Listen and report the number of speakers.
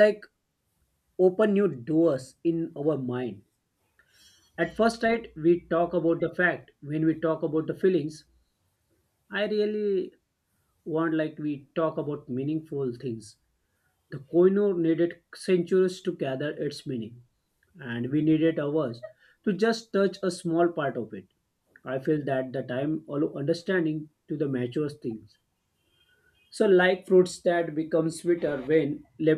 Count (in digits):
1